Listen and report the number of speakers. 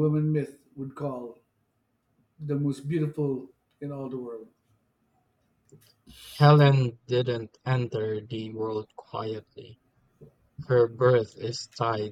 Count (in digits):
2